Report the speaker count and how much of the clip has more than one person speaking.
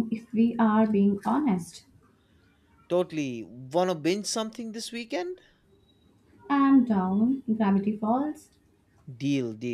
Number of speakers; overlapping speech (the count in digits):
2, no overlap